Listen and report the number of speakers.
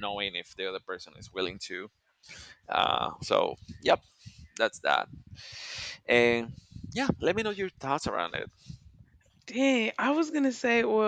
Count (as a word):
two